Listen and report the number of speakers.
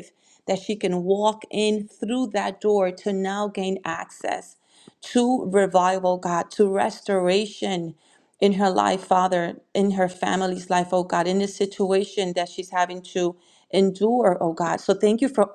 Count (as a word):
one